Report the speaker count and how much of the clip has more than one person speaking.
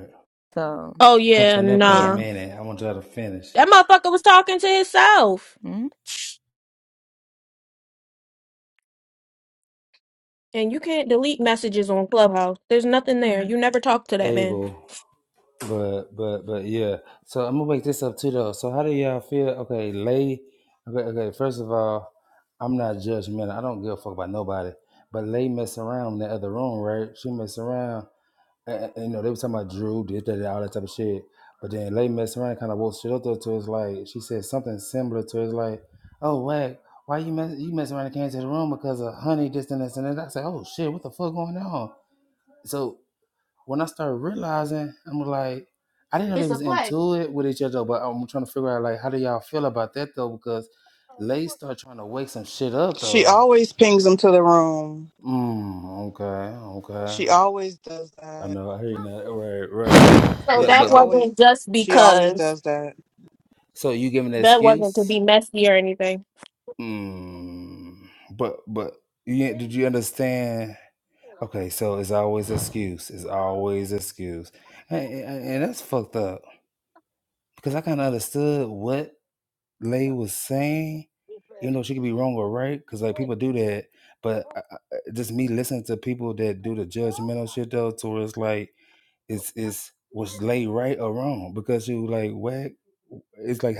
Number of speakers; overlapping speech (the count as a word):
four, about 5%